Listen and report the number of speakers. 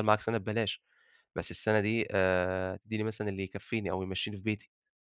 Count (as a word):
one